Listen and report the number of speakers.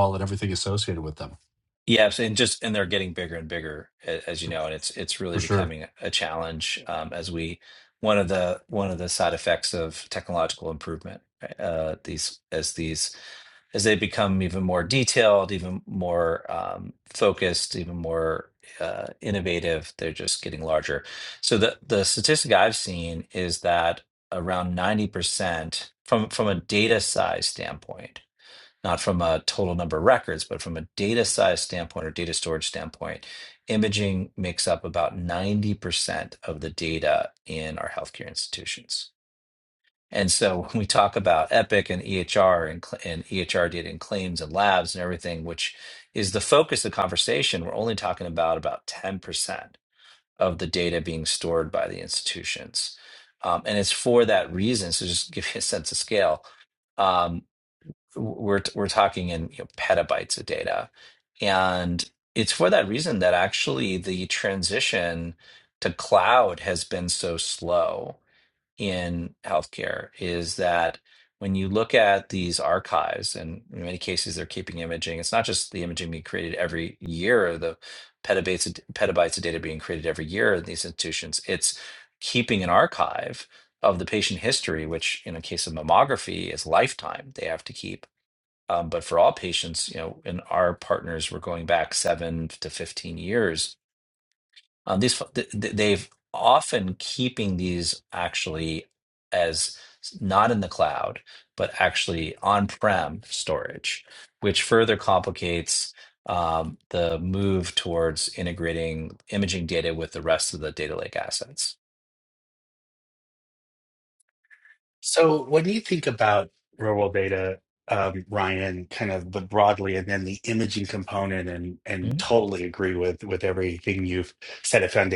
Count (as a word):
three